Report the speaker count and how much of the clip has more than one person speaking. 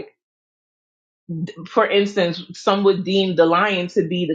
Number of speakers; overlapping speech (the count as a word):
one, no overlap